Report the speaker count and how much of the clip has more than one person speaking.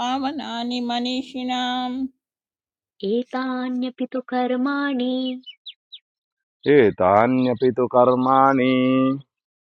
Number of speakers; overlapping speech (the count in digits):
3, no overlap